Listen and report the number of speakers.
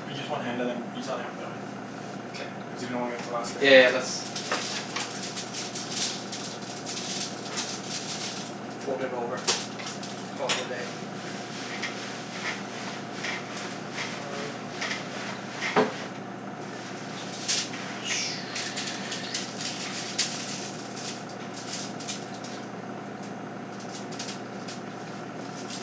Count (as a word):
two